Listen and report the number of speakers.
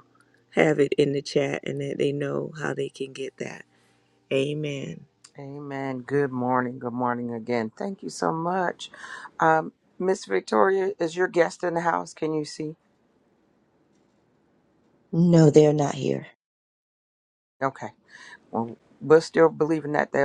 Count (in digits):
3